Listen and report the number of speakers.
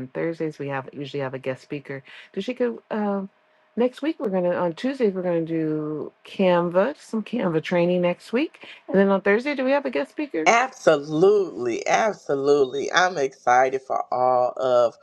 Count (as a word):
two